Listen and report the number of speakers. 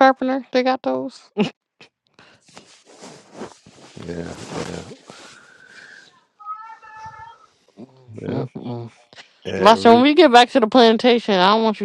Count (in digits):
2